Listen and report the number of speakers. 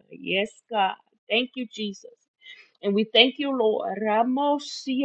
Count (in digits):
1